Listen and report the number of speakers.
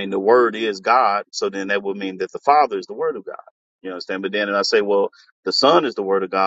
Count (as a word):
one